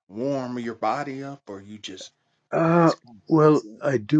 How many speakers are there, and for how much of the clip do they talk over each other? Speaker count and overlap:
2, about 7%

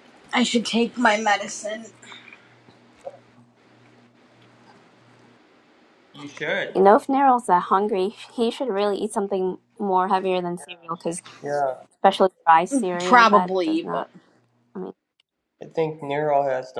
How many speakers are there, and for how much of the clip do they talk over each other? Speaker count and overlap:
3, about 7%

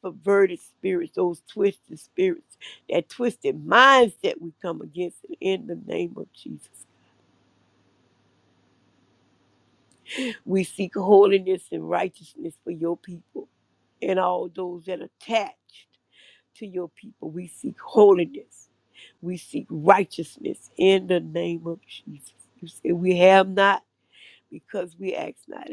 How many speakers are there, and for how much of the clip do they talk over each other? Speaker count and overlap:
1, no overlap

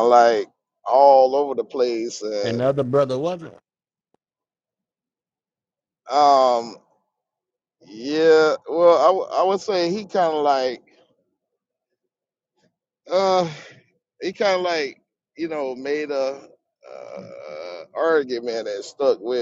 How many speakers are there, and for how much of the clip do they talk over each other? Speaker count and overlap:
2, about 2%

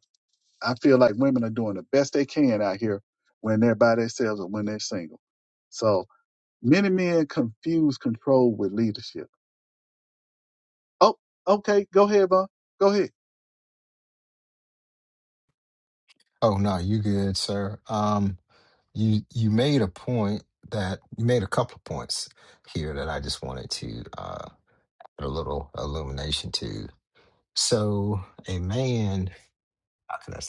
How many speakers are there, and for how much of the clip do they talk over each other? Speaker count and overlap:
2, no overlap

